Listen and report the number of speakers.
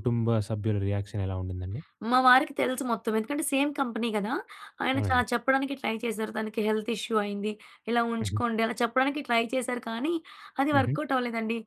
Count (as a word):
two